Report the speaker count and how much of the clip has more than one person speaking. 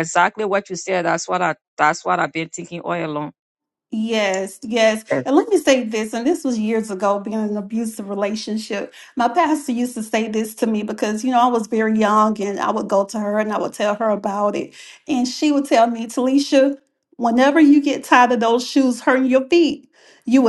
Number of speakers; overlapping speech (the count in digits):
2, about 1%